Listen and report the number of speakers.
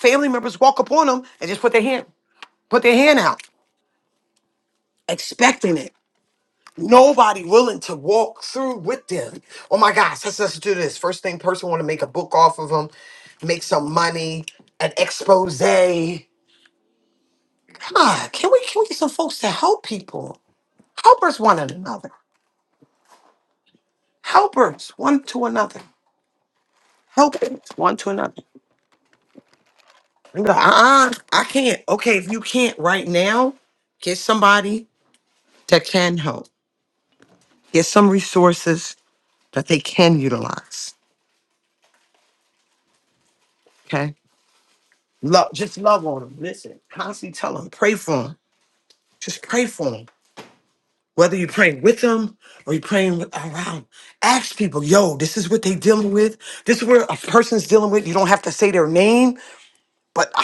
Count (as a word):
one